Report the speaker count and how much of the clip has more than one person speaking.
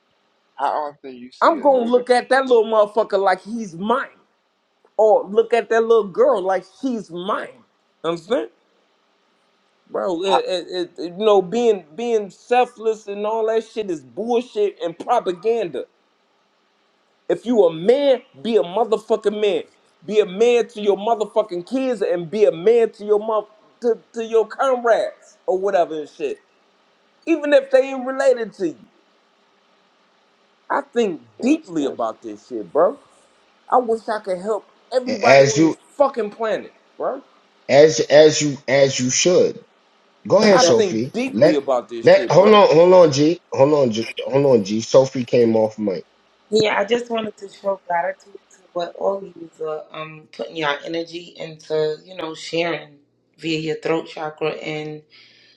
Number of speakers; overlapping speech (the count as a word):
four, about 7%